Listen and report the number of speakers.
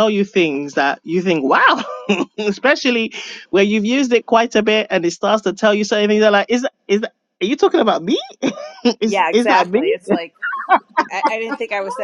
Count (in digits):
2